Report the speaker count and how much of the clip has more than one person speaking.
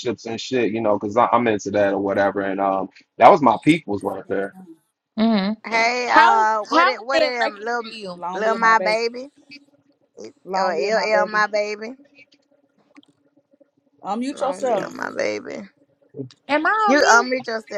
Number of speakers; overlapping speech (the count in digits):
4, about 25%